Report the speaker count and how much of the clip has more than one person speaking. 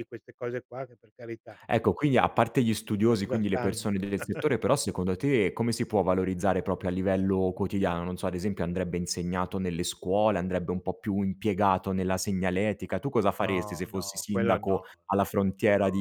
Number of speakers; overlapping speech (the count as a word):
two, about 14%